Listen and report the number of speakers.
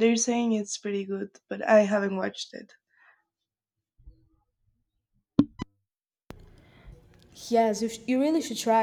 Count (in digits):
2